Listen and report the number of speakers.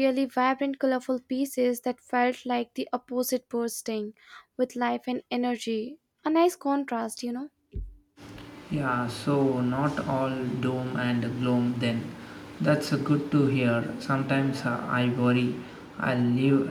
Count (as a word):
two